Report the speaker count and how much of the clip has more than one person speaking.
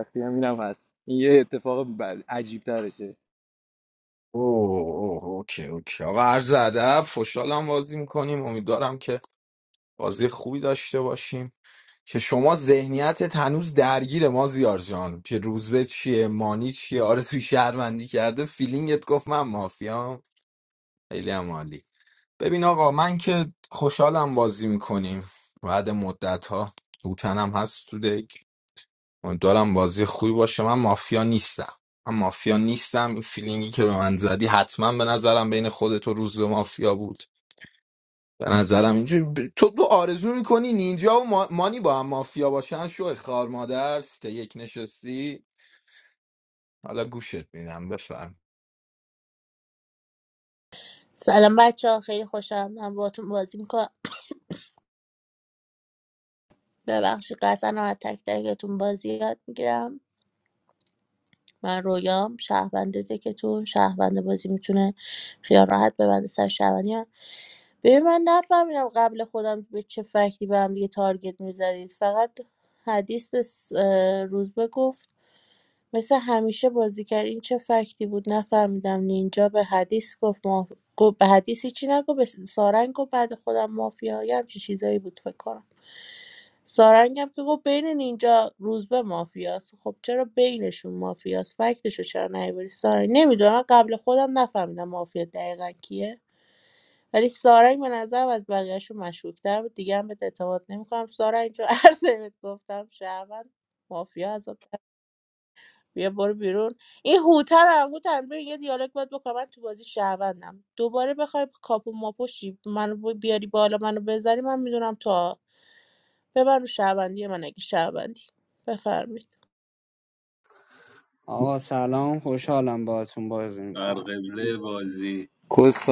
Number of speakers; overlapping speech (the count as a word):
five, under 1%